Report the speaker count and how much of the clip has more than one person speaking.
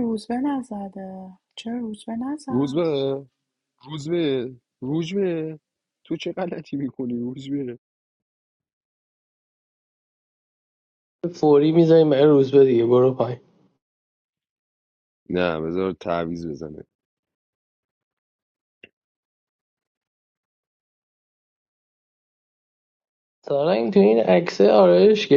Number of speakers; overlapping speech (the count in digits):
3, about 1%